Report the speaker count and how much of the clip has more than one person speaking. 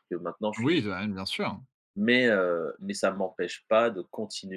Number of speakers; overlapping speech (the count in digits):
2, about 6%